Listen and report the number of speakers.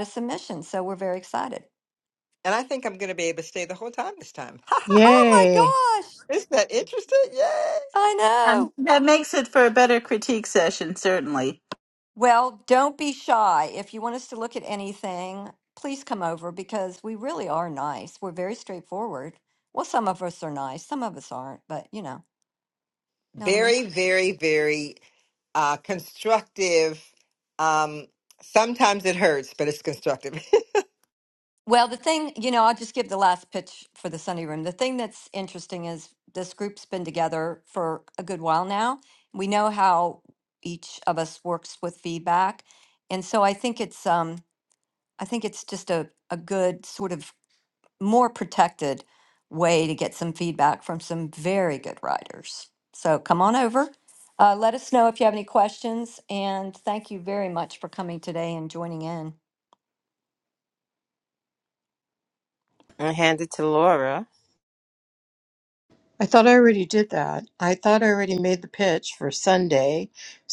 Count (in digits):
5